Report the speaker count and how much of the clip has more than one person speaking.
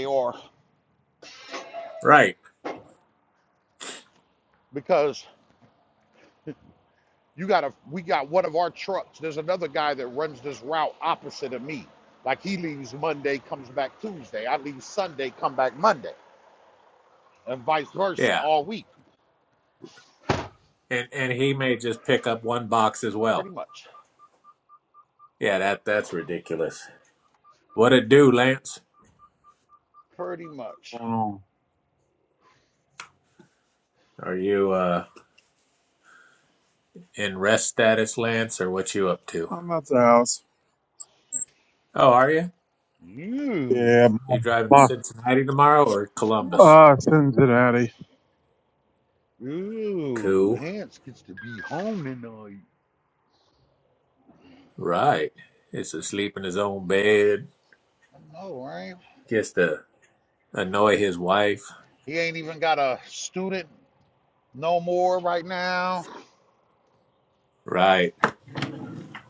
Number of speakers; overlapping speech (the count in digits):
3, about 2%